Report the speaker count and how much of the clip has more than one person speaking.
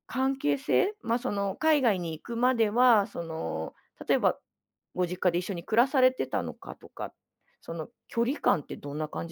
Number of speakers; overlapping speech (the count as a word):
one, no overlap